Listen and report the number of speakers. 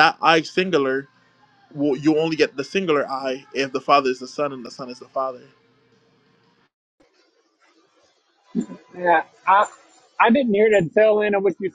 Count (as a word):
two